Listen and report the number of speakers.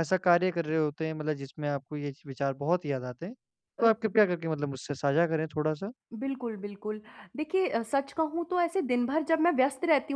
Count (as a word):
two